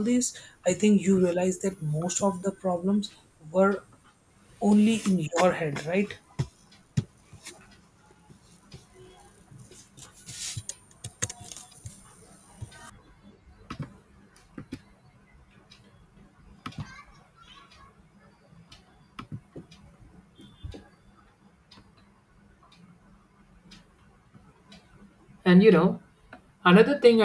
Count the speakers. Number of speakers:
two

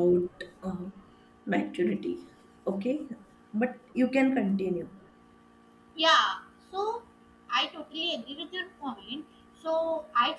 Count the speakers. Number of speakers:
two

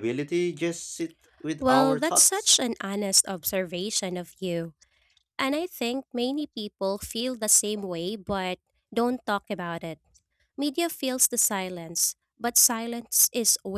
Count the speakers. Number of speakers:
two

